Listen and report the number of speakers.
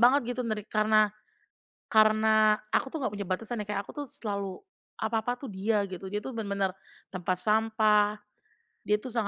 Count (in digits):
1